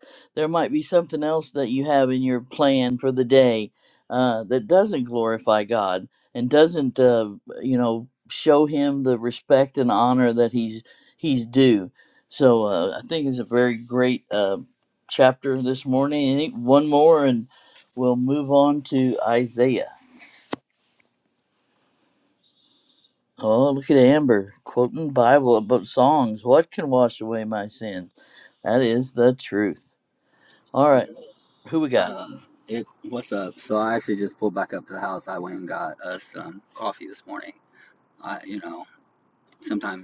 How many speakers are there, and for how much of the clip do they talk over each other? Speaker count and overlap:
2, about 1%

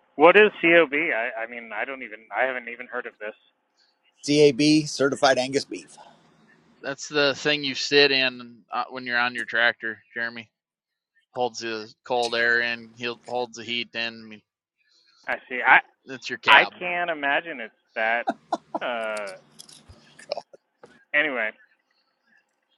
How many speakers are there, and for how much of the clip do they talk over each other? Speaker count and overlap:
3, about 1%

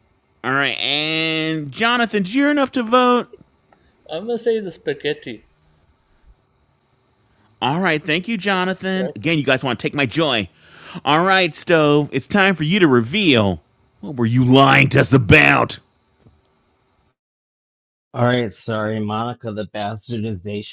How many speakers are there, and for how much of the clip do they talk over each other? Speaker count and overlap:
3, about 2%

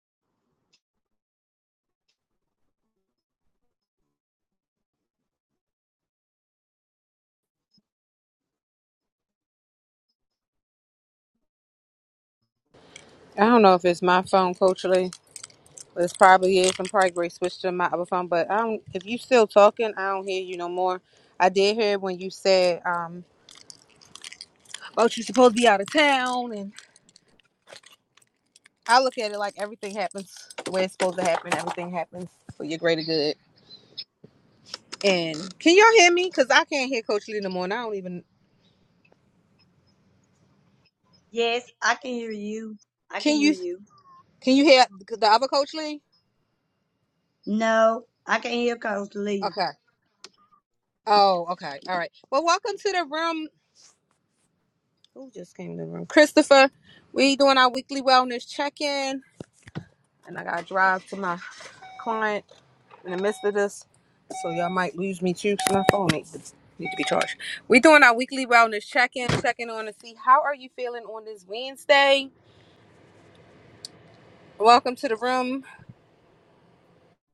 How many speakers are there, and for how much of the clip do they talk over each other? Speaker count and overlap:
2, about 1%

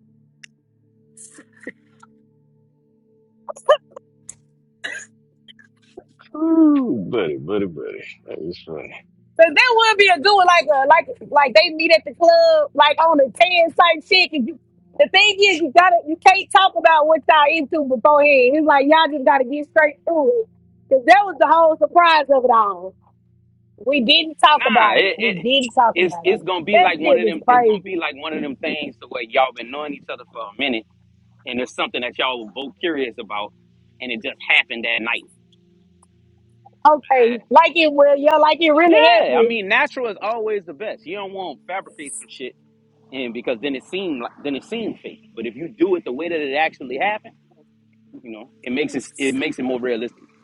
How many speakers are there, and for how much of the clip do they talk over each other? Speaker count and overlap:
3, about 7%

